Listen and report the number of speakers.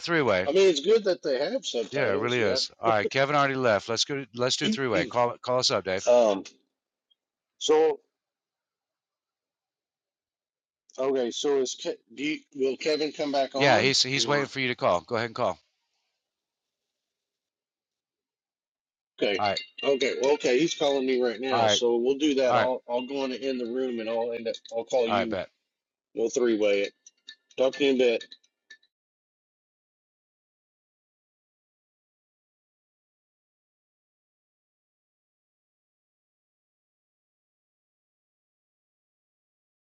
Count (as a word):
two